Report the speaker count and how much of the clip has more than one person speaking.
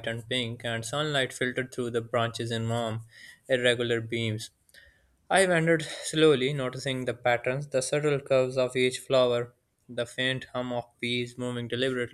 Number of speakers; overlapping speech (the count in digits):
1, no overlap